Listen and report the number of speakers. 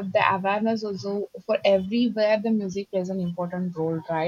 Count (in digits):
1